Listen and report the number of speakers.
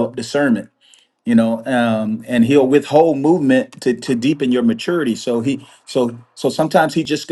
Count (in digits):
1